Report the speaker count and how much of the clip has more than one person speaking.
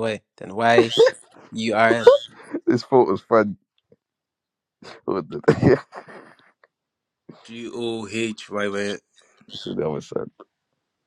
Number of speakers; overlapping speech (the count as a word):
three, no overlap